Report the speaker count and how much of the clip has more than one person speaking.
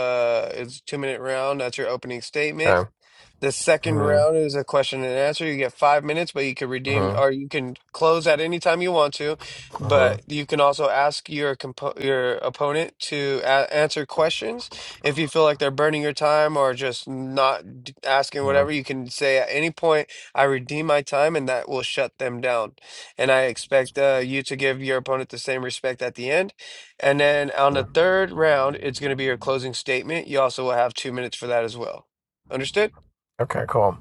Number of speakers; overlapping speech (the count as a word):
two, about 4%